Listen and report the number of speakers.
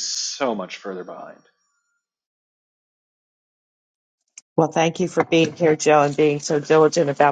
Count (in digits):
2